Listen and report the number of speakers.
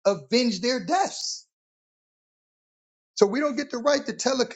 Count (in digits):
1